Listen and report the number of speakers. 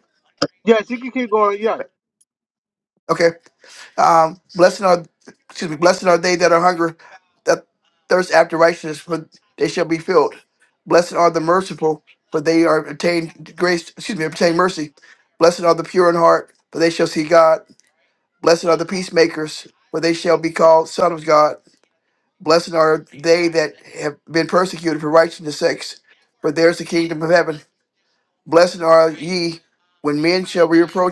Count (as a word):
two